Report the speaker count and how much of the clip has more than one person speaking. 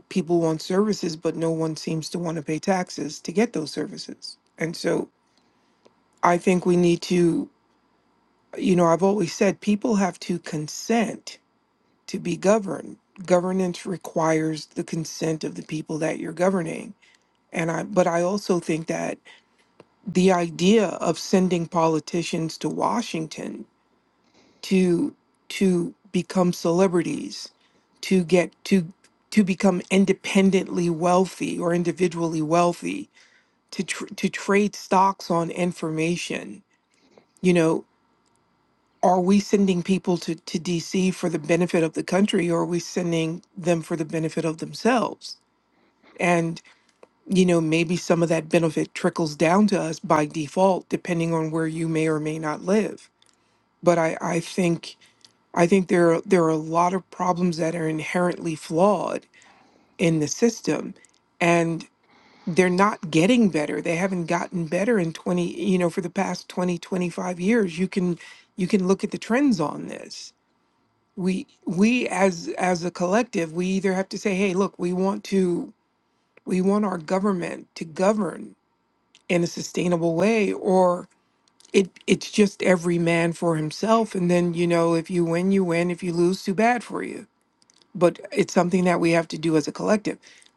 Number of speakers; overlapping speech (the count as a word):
one, no overlap